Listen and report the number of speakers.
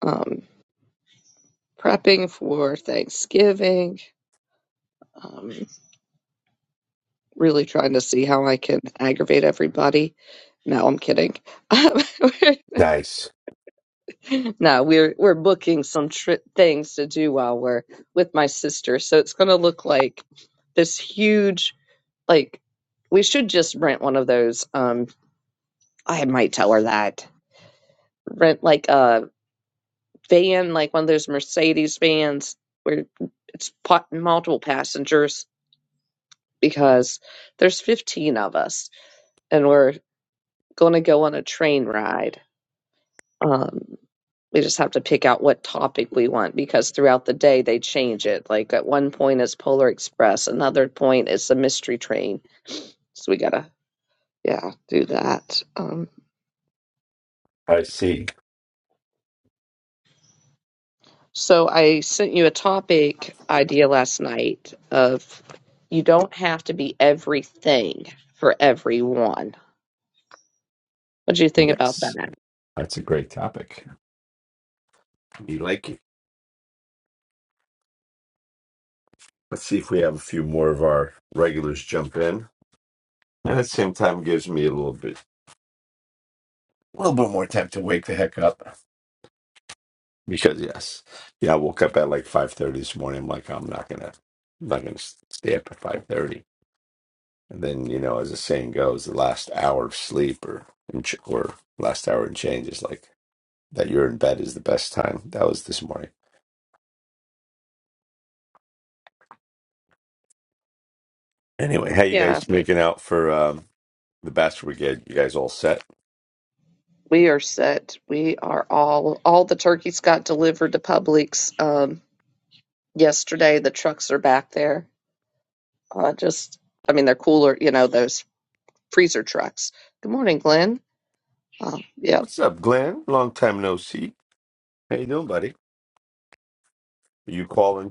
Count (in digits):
2